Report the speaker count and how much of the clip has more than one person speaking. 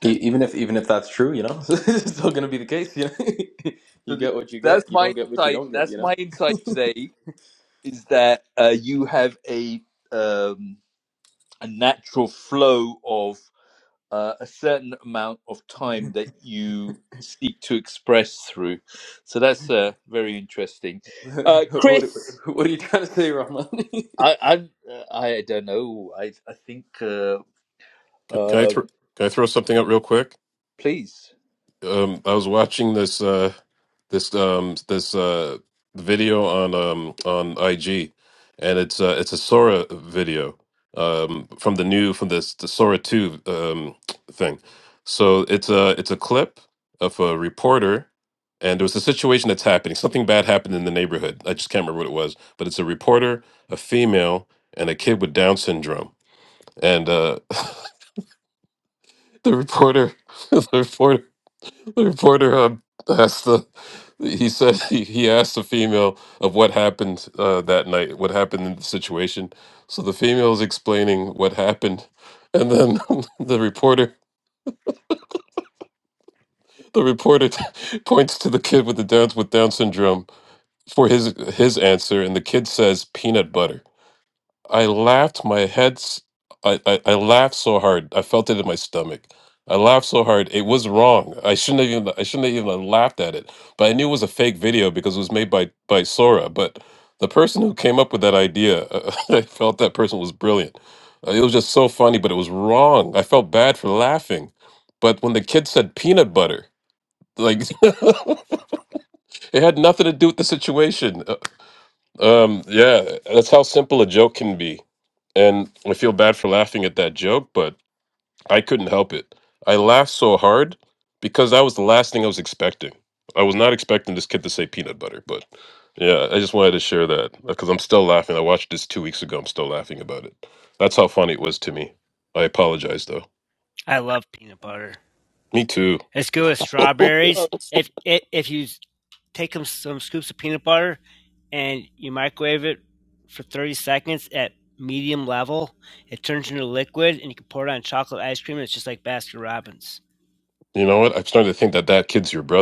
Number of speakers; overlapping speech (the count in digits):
4, about 2%